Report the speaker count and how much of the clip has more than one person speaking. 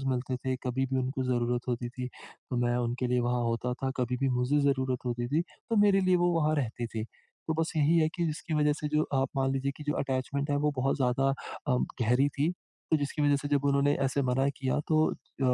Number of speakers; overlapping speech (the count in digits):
1, no overlap